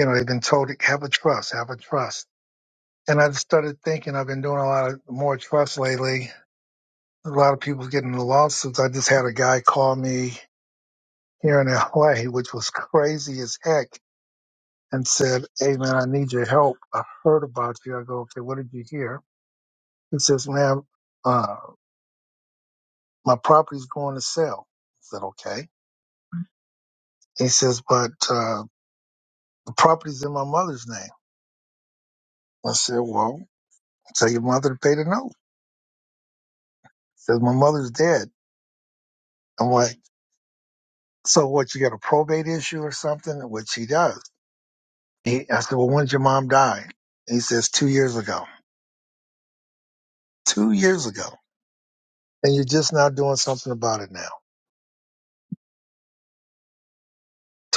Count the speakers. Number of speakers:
one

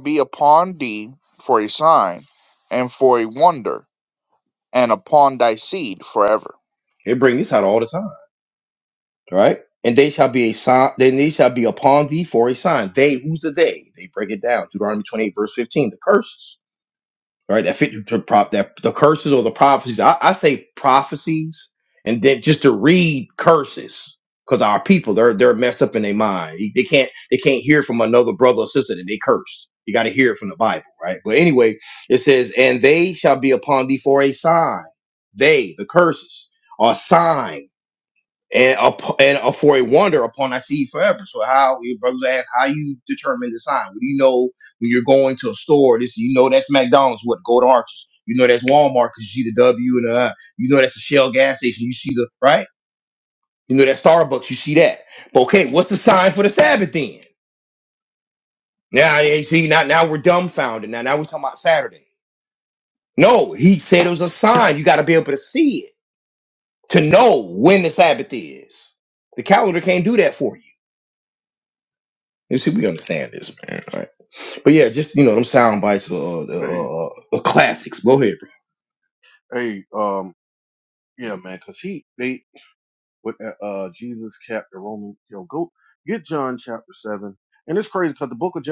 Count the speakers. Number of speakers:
three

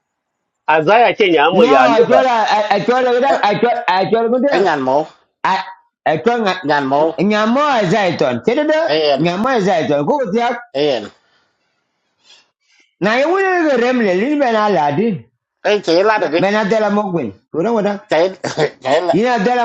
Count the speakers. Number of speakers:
three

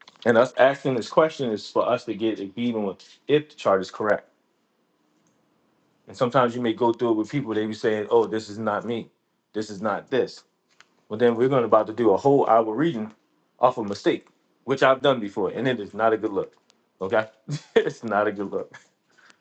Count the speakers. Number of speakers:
one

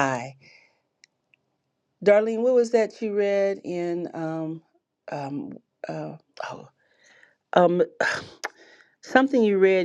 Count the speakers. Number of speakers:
one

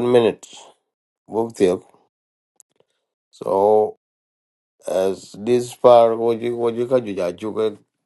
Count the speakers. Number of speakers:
one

